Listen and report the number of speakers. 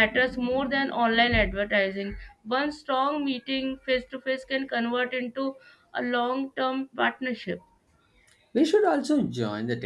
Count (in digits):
2